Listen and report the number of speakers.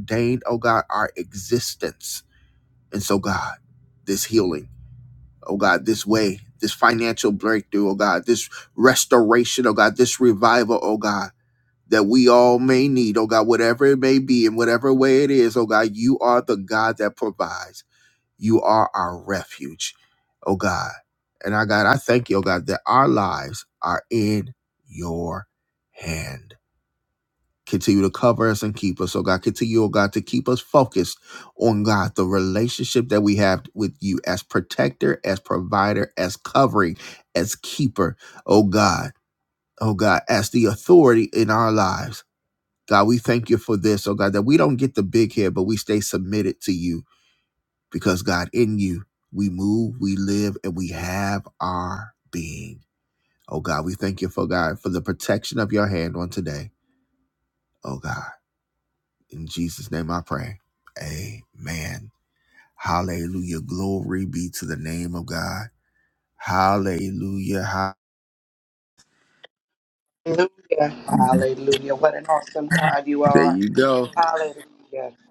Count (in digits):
2